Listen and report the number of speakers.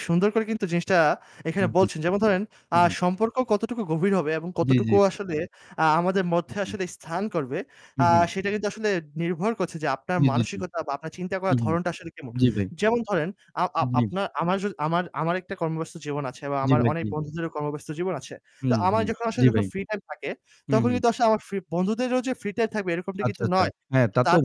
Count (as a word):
two